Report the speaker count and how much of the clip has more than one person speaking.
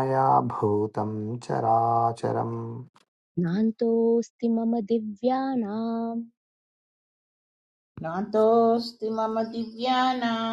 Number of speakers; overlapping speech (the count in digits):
3, no overlap